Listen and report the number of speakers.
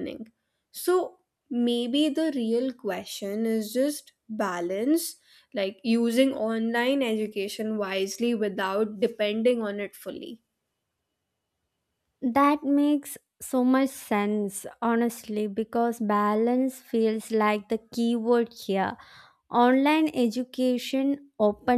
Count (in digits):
2